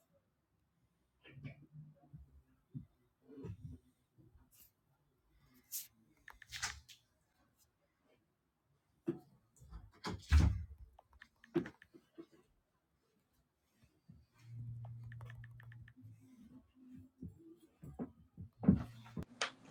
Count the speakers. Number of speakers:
zero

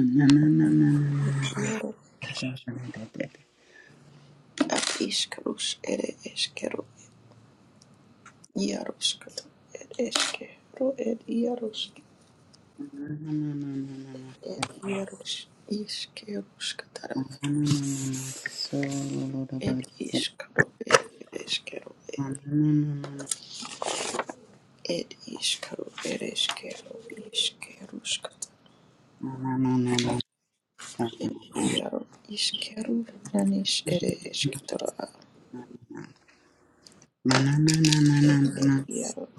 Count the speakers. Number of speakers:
two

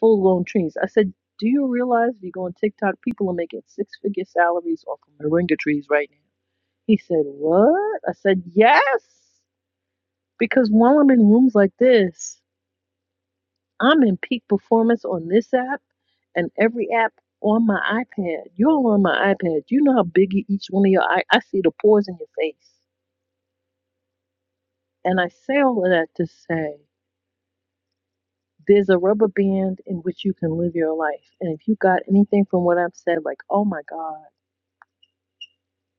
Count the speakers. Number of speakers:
one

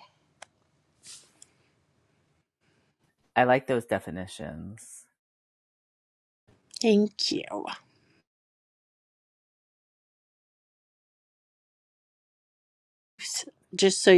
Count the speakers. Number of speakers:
two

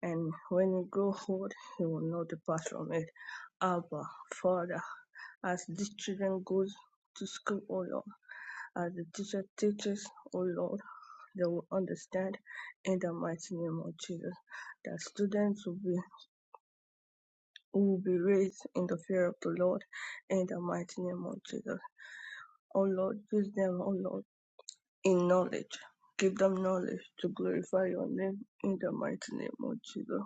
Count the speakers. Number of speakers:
one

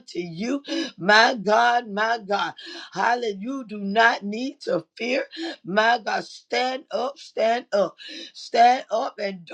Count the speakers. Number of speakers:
one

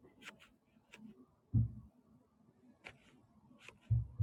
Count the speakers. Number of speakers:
zero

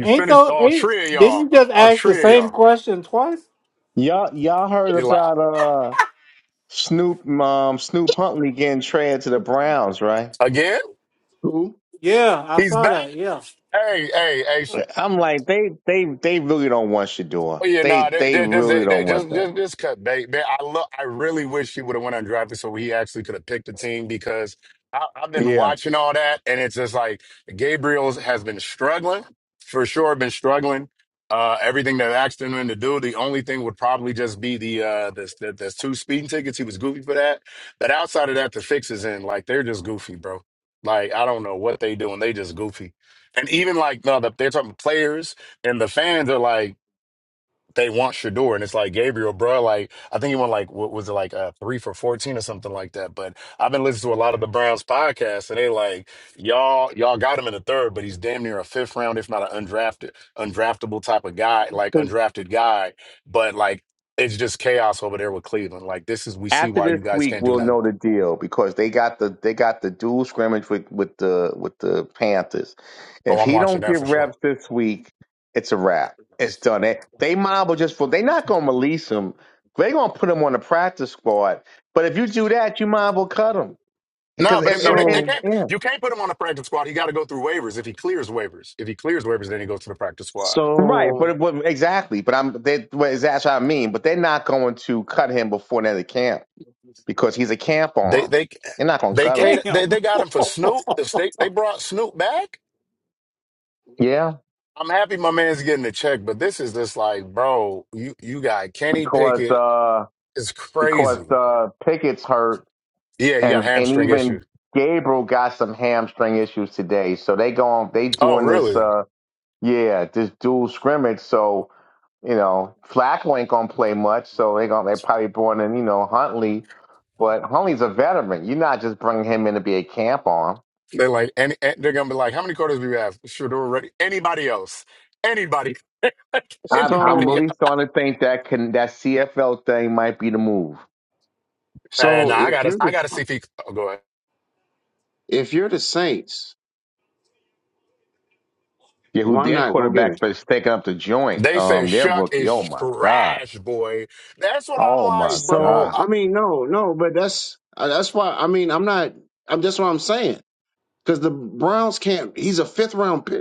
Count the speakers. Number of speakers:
four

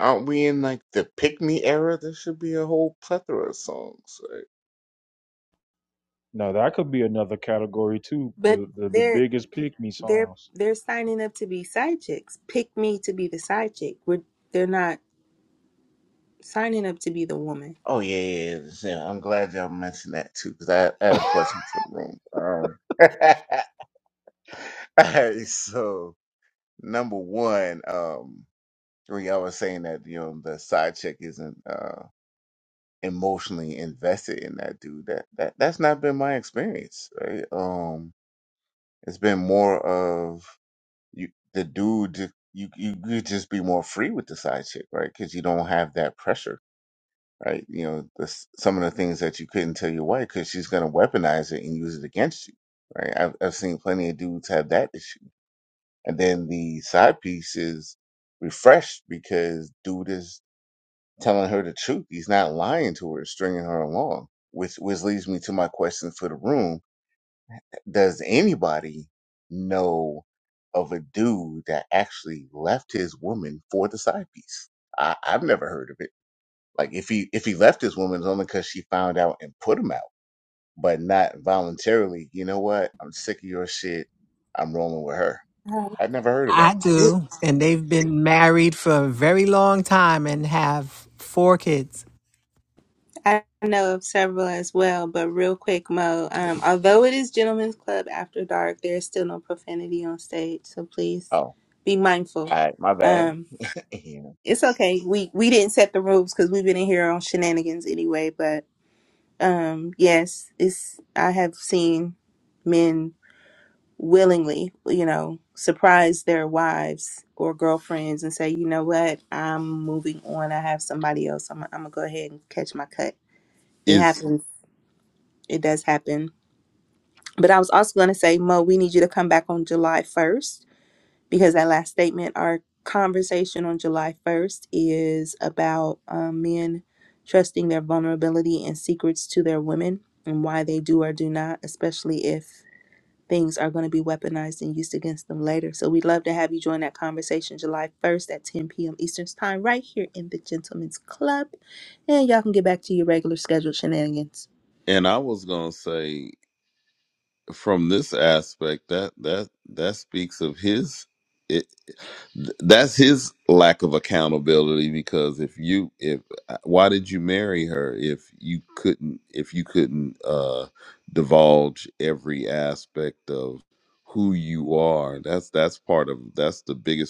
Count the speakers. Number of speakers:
five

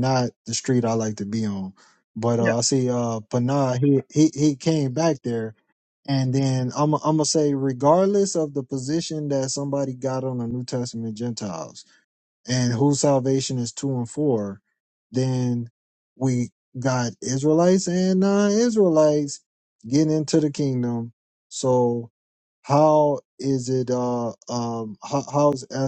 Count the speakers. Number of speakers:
one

